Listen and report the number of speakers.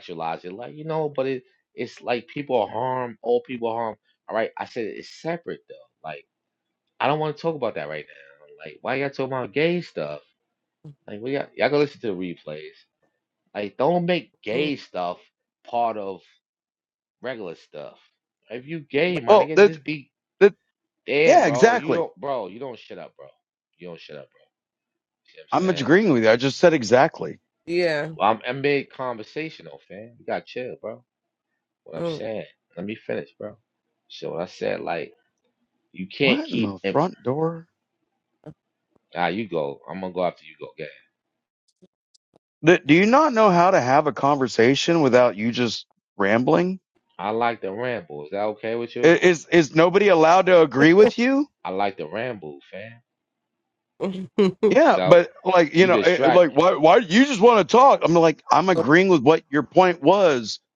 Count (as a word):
three